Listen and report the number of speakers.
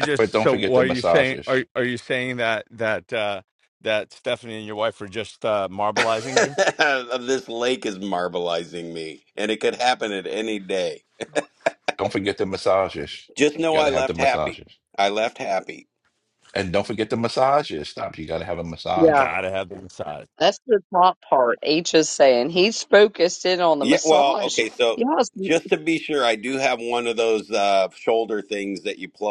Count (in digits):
4